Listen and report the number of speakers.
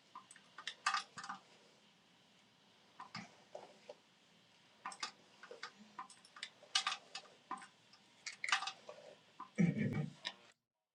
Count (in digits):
0